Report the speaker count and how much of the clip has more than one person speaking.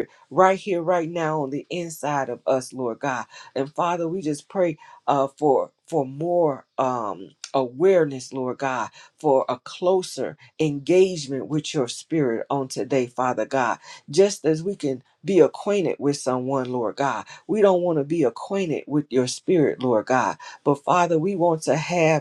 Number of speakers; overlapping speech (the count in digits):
1, no overlap